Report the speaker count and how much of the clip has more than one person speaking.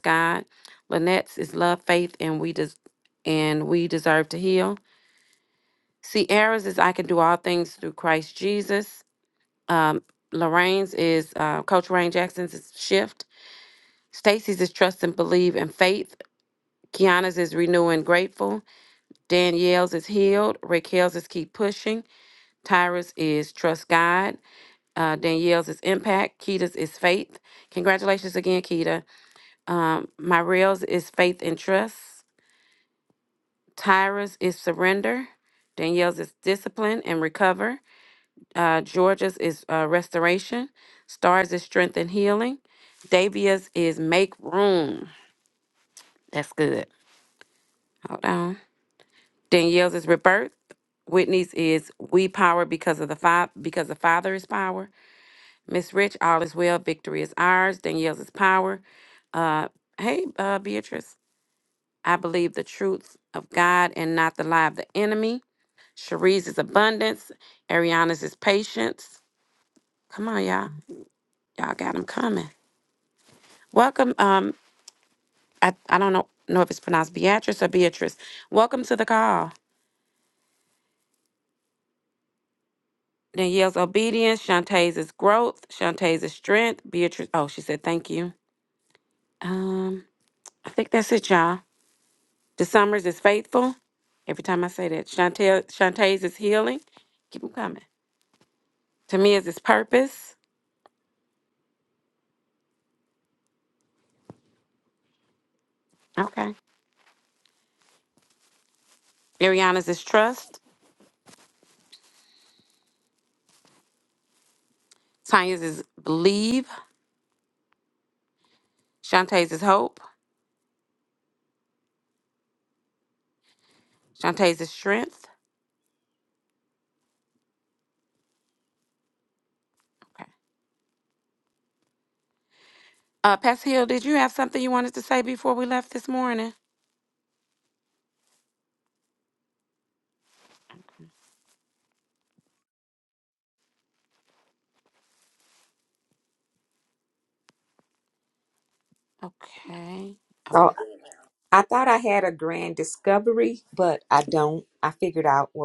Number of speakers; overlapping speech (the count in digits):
2, no overlap